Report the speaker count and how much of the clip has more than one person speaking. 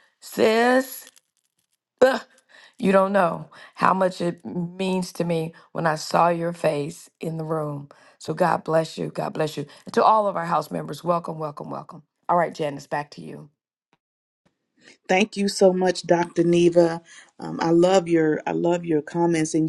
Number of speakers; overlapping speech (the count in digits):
2, no overlap